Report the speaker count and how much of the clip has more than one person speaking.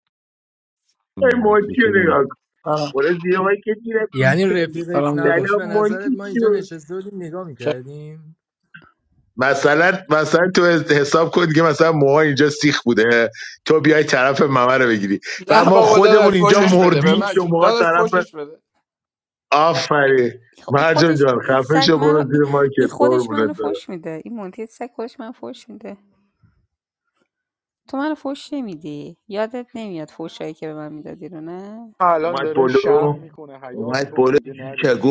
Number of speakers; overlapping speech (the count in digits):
5, about 30%